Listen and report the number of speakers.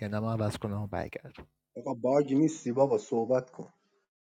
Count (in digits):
2